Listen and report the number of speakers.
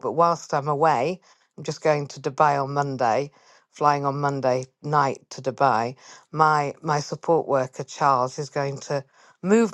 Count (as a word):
one